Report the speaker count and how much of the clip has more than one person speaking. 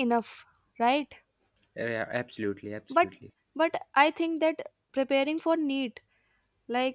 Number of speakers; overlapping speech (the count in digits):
2, about 2%